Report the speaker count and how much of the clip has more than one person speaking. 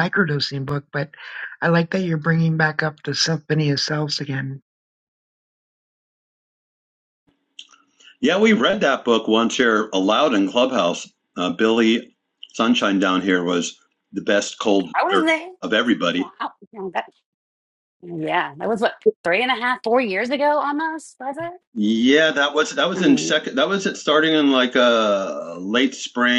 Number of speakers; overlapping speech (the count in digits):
3, about 3%